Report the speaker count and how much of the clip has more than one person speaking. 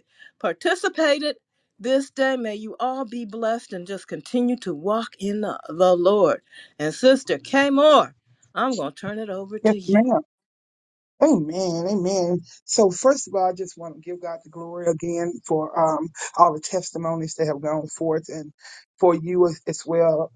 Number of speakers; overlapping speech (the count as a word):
two, about 2%